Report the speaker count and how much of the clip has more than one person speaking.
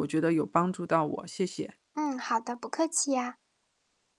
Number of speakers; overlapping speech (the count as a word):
two, no overlap